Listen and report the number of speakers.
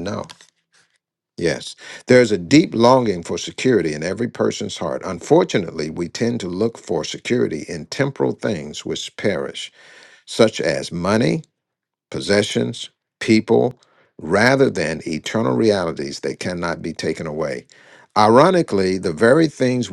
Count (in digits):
1